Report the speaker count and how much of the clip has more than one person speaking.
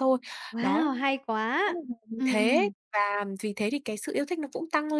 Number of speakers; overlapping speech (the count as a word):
two, about 16%